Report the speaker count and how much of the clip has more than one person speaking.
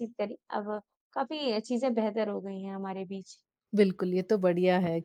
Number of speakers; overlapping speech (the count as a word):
two, no overlap